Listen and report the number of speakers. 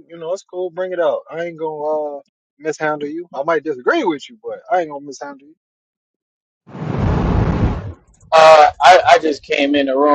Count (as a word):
two